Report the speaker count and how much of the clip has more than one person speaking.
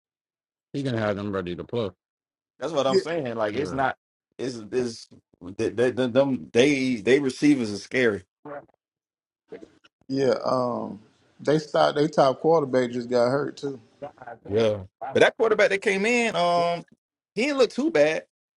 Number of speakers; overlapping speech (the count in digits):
3, about 1%